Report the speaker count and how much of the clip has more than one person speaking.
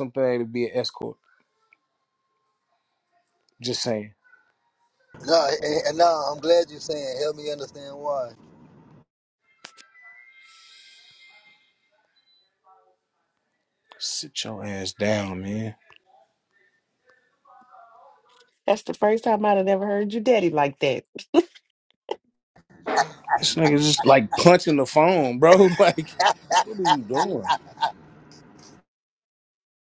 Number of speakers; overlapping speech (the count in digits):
3, no overlap